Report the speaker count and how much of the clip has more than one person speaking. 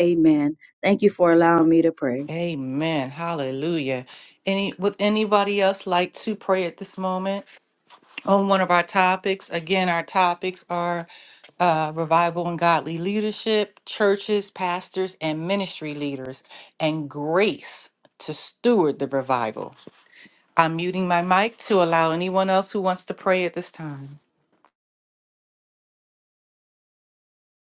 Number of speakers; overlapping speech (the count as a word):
two, no overlap